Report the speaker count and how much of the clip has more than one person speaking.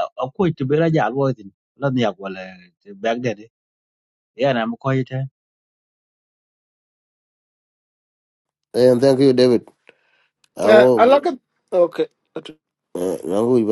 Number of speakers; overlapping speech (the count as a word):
three, about 4%